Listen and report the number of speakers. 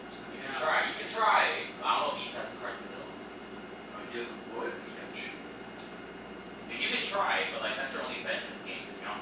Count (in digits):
2